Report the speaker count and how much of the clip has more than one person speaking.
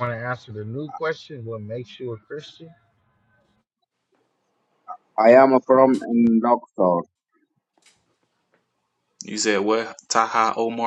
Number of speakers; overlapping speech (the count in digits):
3, no overlap